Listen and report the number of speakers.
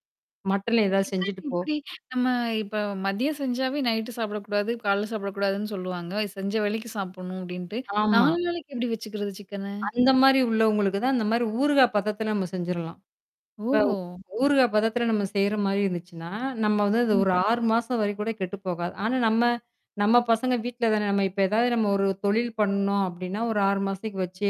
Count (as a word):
two